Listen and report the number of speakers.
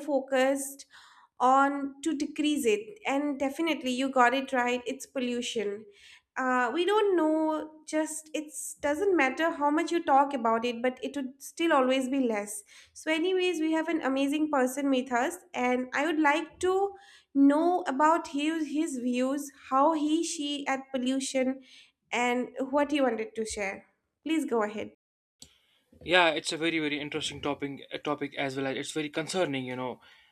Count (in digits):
2